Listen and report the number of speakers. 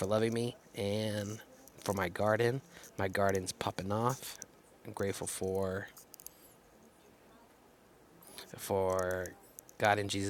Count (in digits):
1